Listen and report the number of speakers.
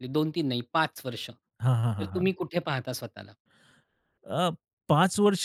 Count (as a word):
two